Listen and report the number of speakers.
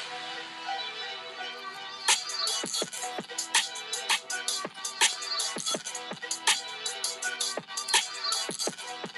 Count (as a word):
zero